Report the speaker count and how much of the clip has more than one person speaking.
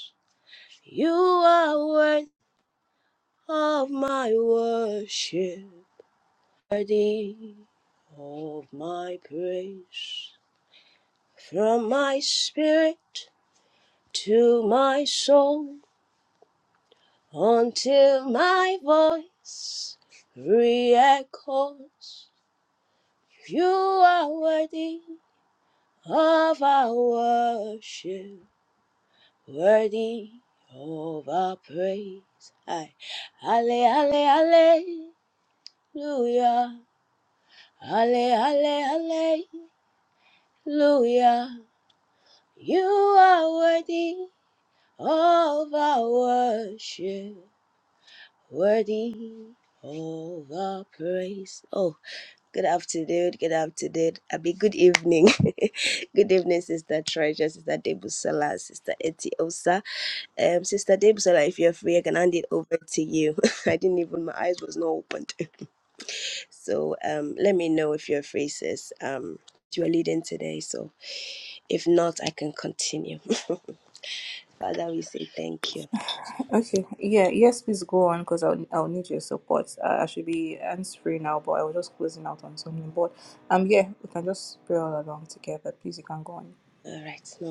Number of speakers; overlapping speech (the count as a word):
two, no overlap